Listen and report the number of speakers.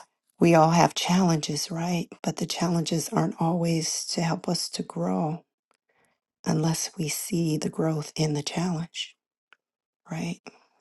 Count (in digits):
1